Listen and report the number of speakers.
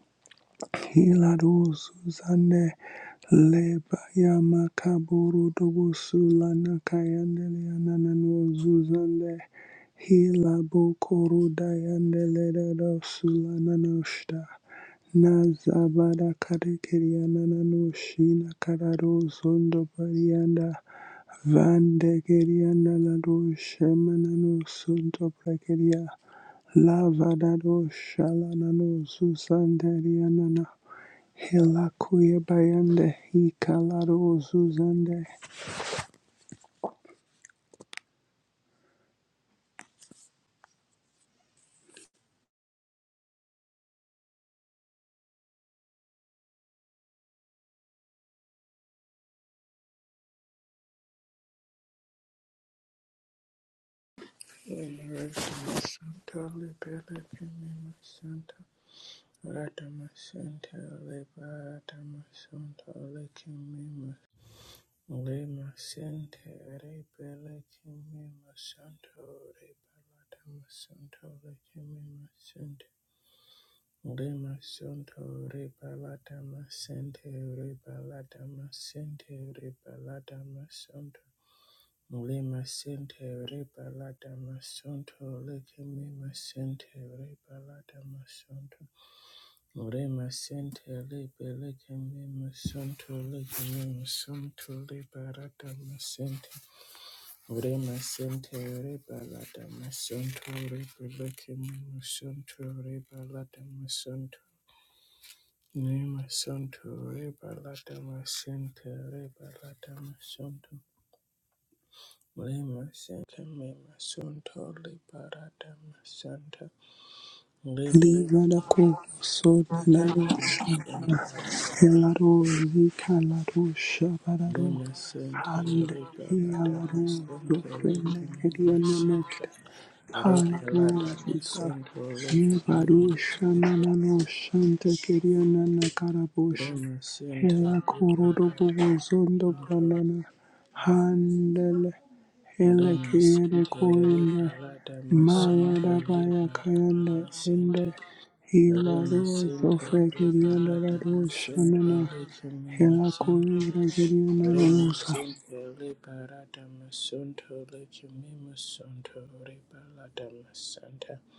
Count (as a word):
two